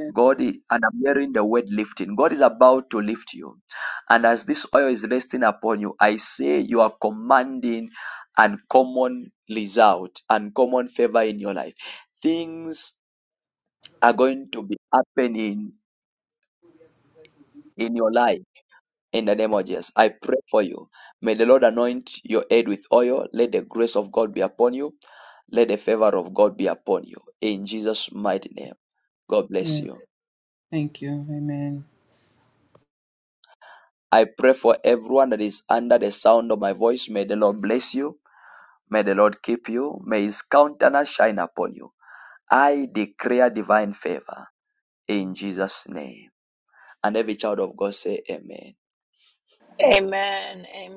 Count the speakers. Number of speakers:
three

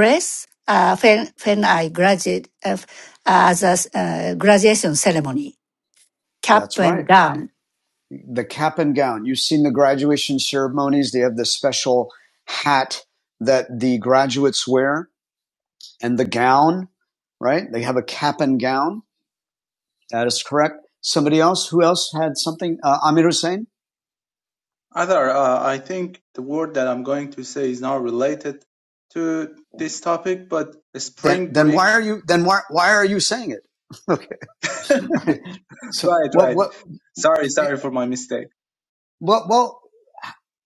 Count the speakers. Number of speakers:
three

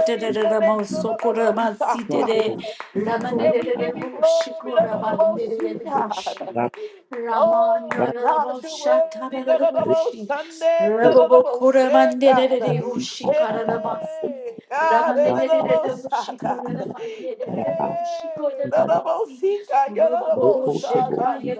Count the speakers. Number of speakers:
three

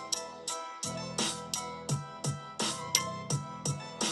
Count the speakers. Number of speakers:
zero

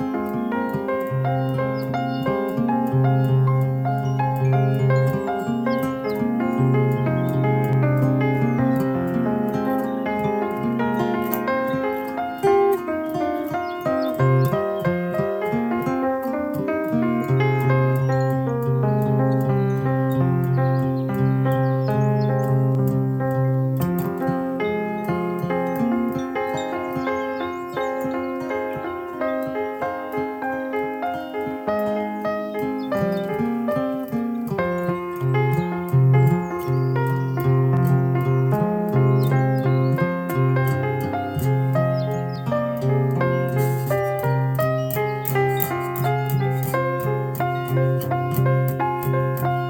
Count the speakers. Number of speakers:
zero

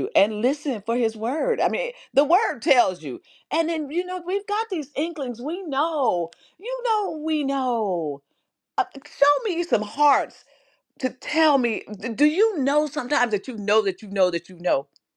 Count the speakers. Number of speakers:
one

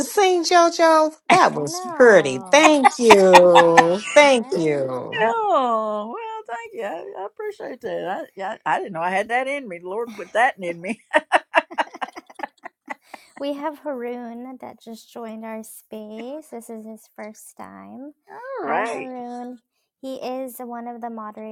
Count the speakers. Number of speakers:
three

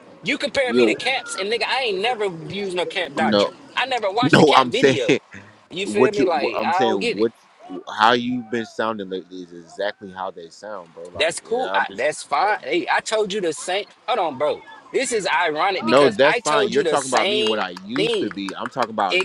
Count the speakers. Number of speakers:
two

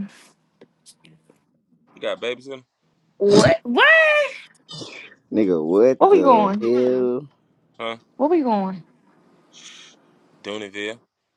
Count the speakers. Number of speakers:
three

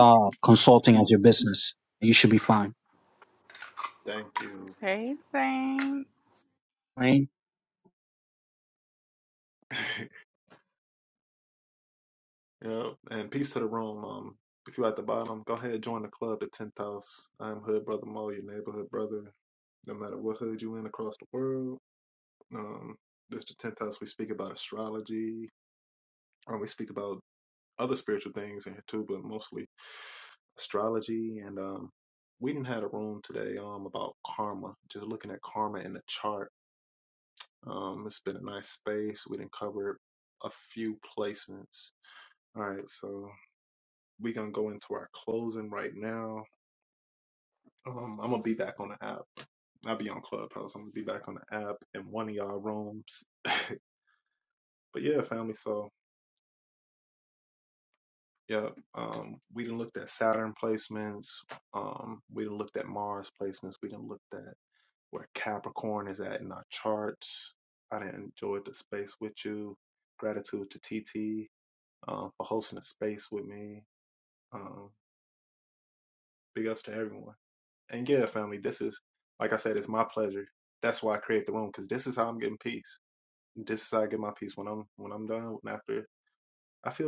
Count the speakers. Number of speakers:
three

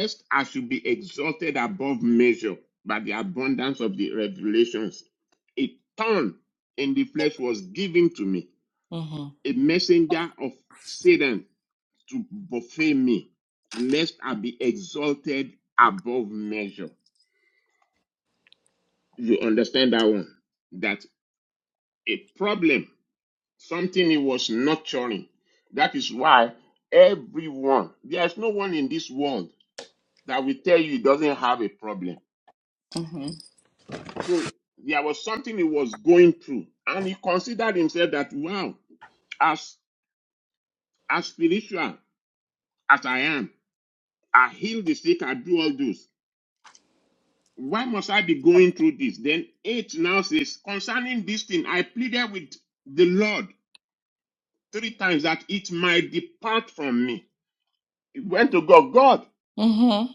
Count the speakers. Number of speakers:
two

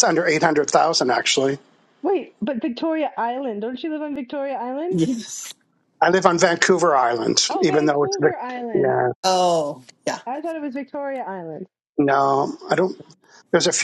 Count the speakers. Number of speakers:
three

